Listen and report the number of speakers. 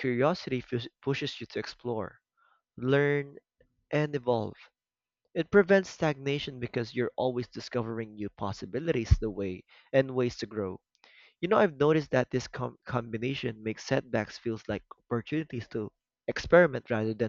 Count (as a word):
one